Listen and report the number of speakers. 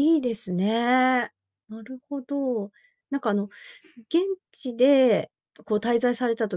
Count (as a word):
one